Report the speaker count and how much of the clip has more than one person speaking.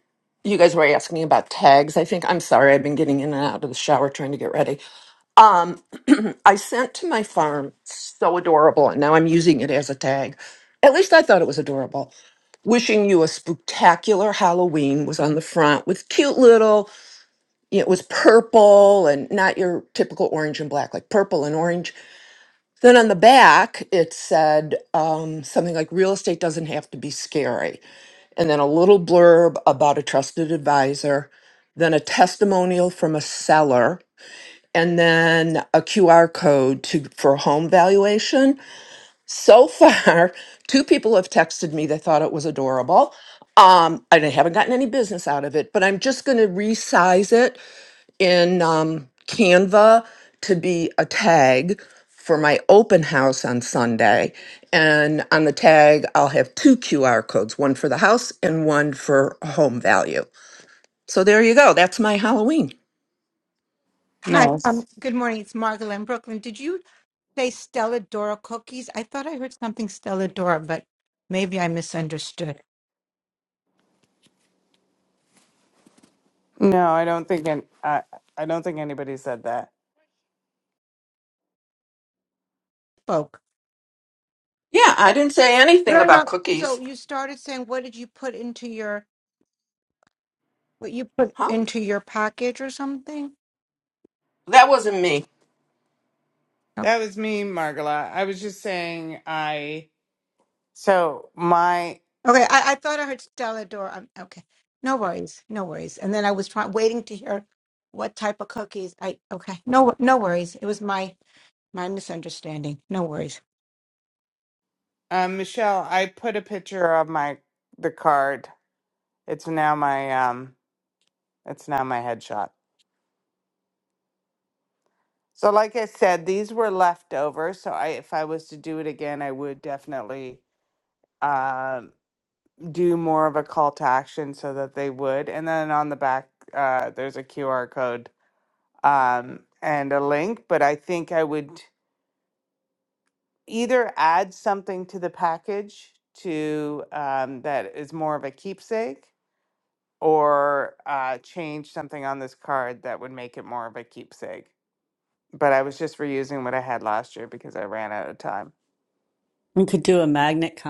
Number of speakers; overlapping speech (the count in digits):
4, about 1%